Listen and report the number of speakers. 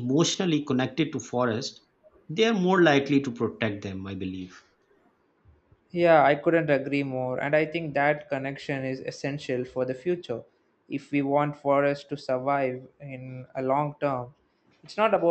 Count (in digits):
2